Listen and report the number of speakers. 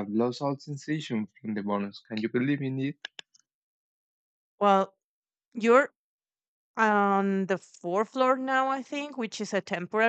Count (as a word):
two